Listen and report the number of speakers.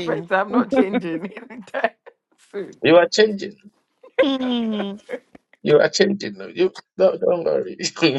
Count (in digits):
3